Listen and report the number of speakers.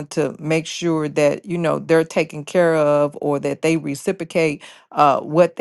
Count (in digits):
1